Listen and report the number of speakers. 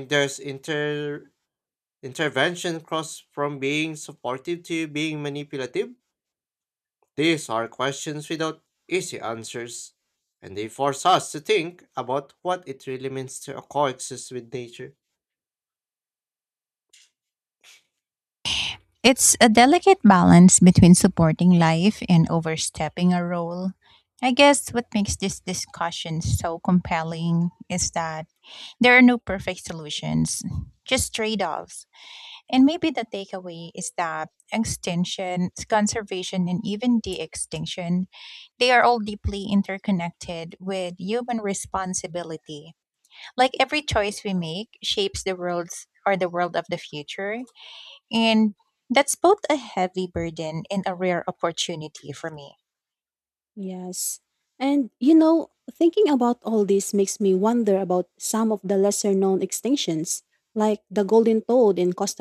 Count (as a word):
three